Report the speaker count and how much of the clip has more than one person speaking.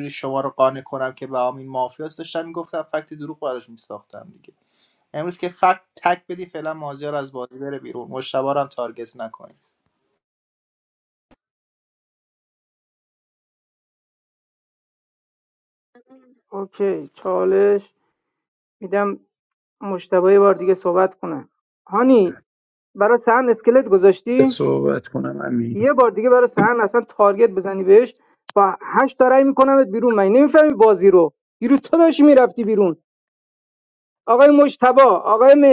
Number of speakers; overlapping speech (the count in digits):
3, about 1%